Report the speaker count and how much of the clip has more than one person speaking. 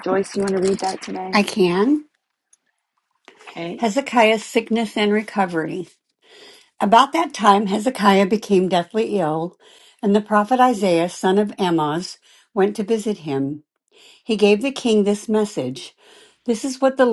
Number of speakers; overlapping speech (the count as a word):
two, about 1%